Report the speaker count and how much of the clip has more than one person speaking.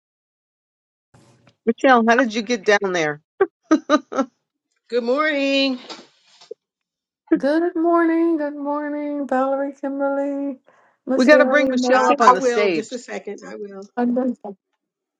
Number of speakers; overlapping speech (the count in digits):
3, about 11%